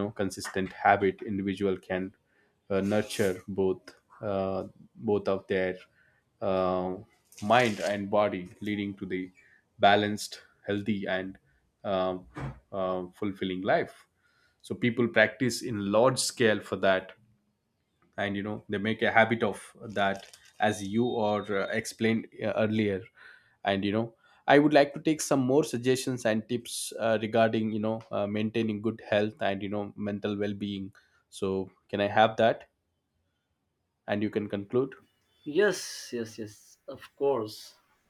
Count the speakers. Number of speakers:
2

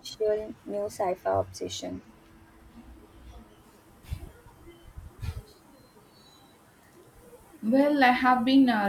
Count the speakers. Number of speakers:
2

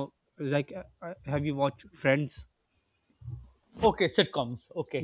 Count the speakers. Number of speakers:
2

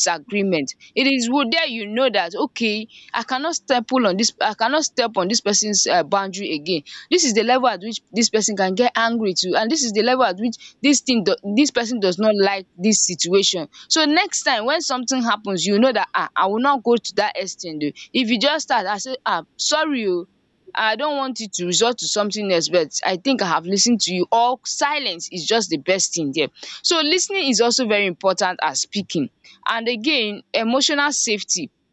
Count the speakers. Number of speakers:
1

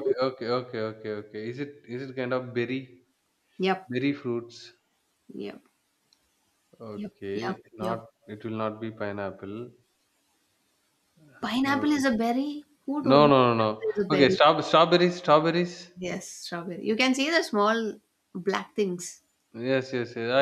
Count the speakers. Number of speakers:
2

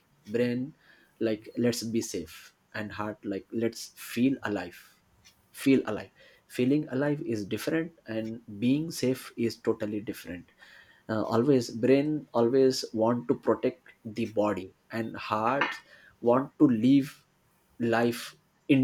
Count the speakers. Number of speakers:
1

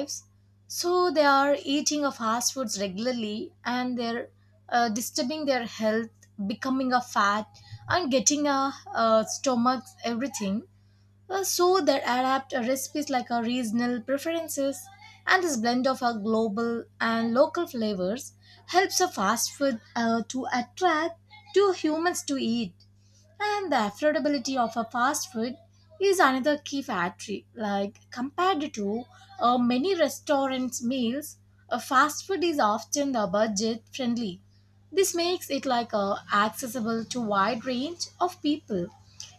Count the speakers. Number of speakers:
1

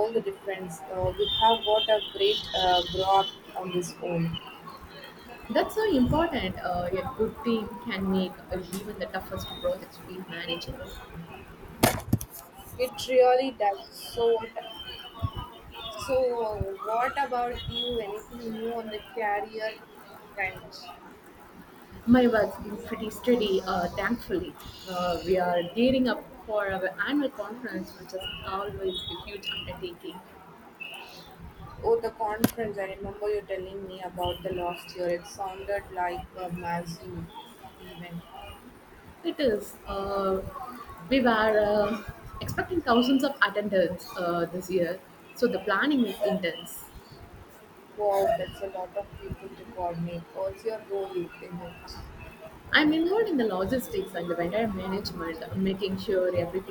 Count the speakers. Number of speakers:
2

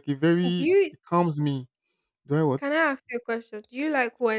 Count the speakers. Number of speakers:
2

